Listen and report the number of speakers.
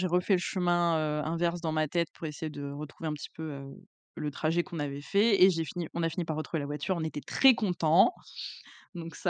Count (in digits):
1